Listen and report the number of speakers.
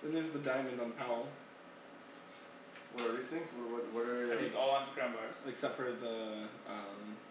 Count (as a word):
three